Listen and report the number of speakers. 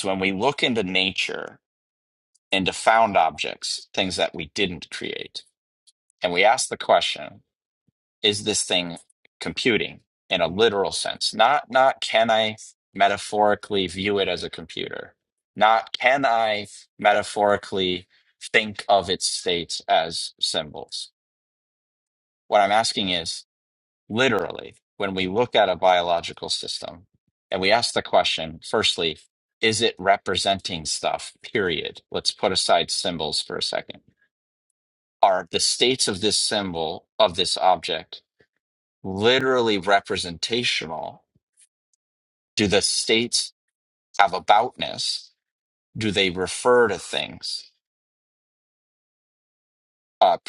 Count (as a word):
one